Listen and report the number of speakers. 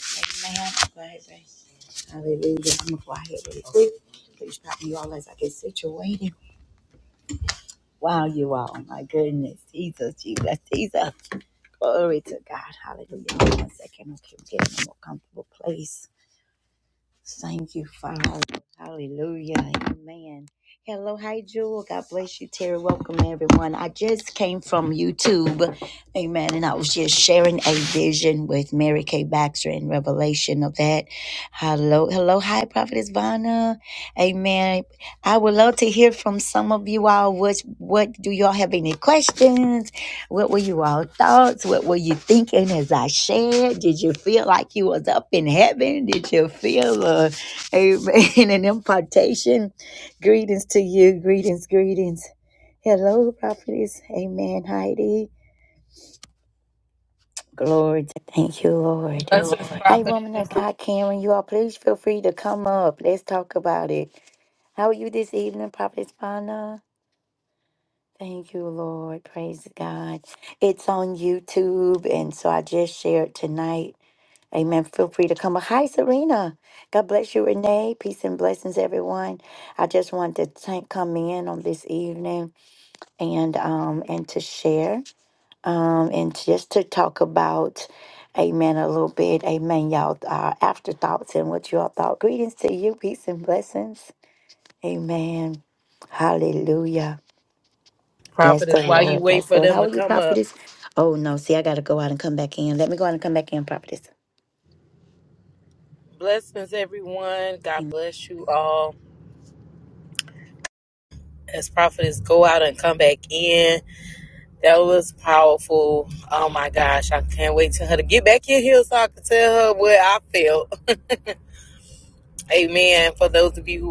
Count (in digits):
2